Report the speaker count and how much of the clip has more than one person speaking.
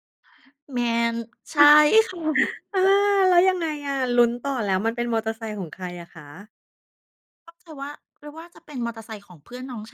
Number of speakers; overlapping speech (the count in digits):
2, no overlap